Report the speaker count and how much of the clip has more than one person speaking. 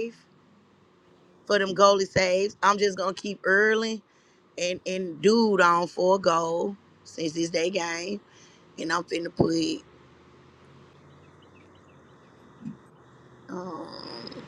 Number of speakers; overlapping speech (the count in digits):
1, no overlap